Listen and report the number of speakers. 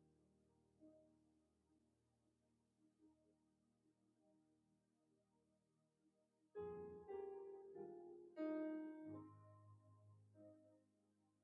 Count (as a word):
zero